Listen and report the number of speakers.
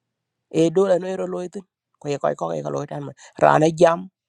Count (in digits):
1